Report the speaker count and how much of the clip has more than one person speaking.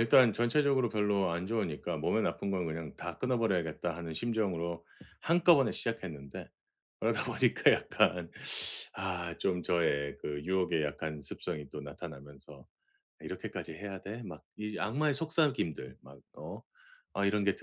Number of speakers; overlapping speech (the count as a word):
one, no overlap